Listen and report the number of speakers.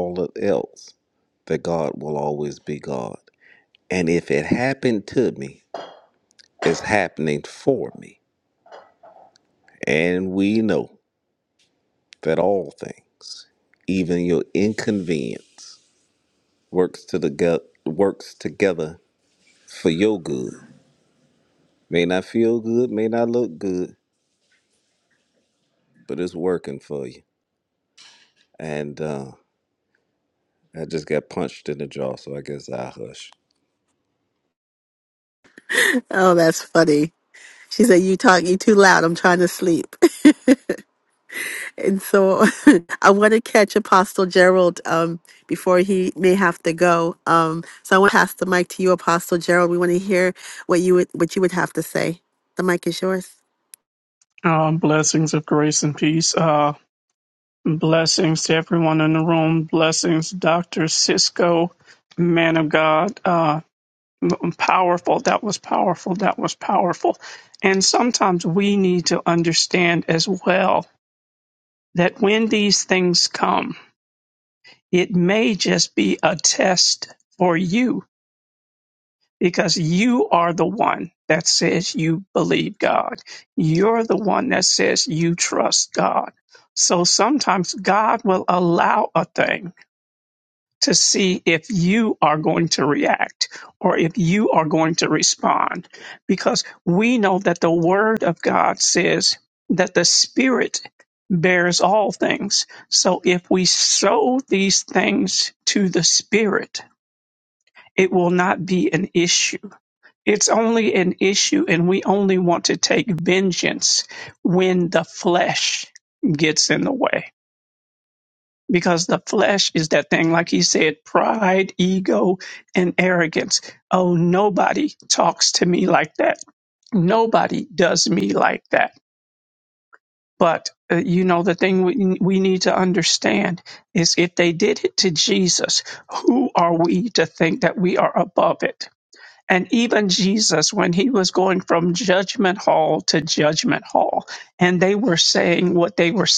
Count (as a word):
three